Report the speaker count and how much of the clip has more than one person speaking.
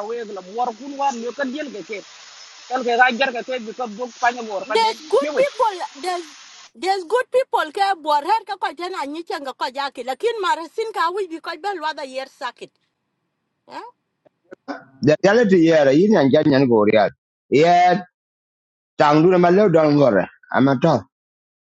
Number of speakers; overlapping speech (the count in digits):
3, about 4%